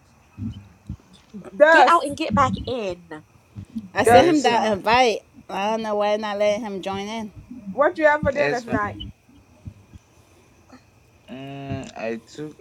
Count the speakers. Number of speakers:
4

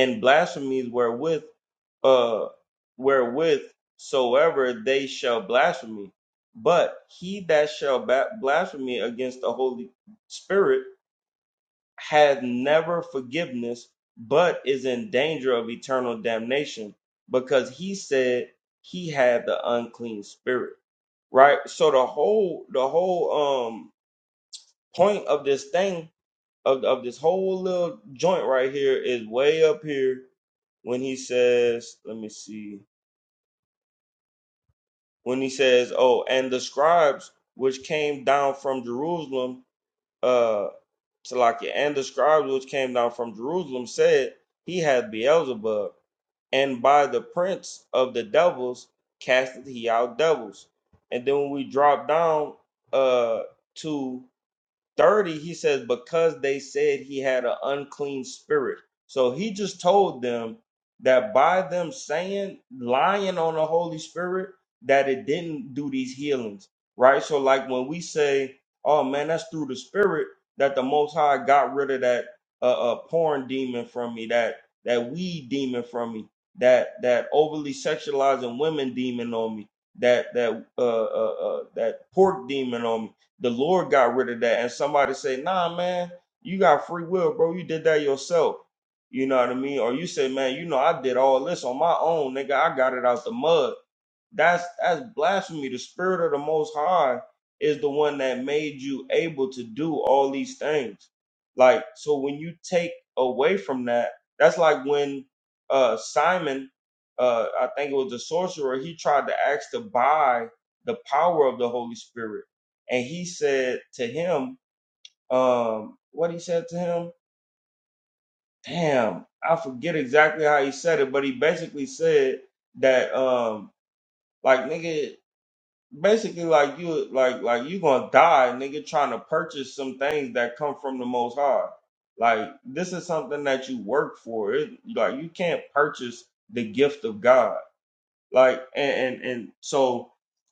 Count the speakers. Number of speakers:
1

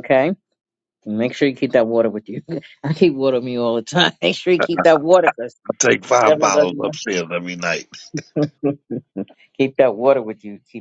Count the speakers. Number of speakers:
2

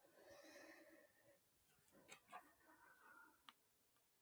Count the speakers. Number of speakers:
0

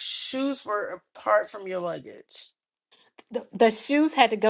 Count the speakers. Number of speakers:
2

